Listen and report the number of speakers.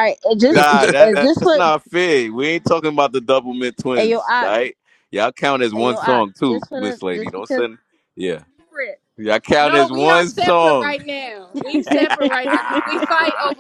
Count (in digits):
3